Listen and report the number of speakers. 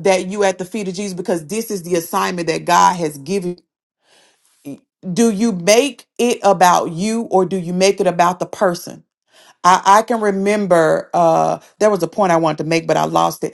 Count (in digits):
1